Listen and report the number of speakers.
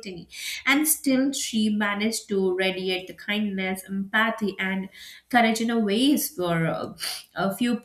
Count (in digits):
1